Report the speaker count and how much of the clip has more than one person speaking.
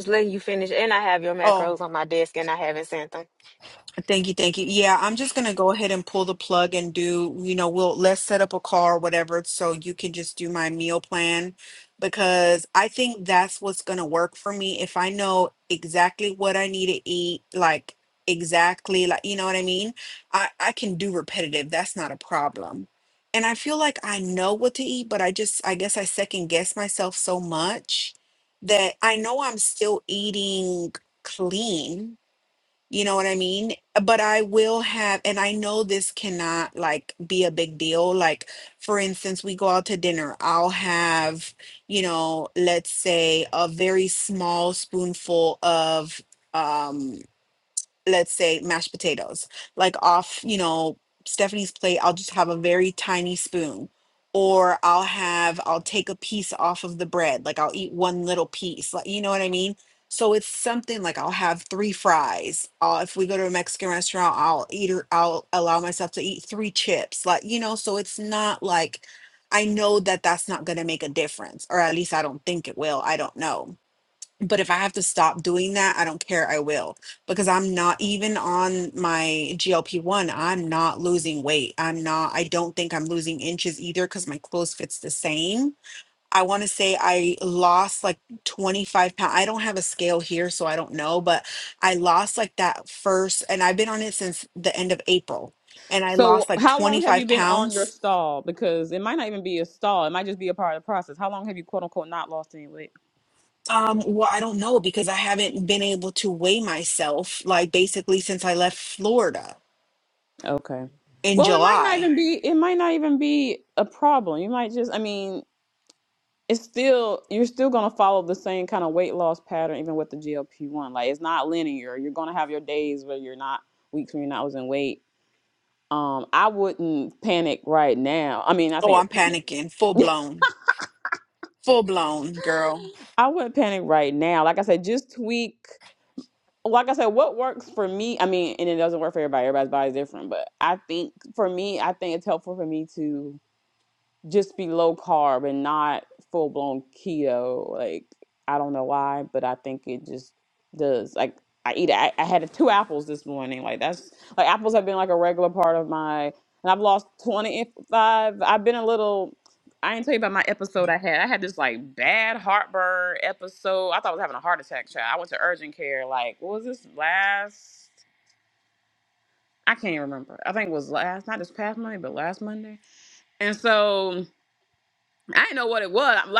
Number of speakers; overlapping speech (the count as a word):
three, about 2%